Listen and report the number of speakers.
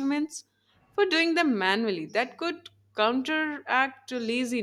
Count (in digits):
1